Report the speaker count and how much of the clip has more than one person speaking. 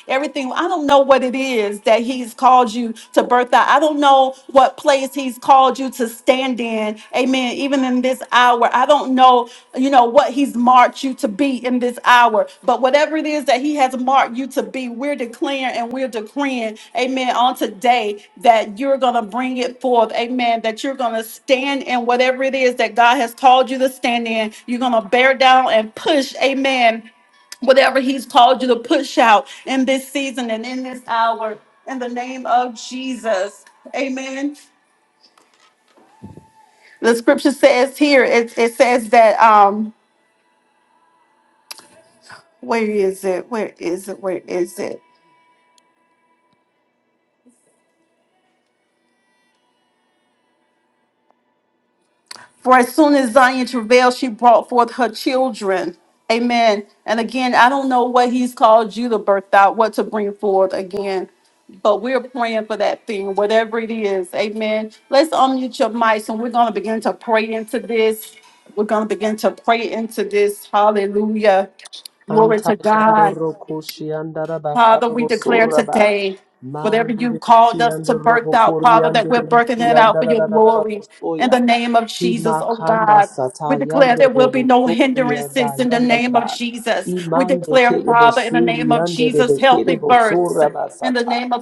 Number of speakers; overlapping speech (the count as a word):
two, about 16%